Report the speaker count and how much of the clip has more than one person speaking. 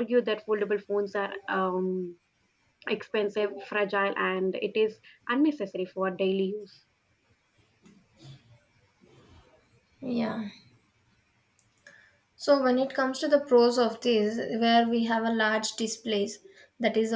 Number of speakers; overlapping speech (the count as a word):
two, no overlap